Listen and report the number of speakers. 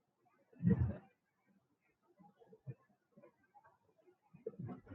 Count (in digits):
0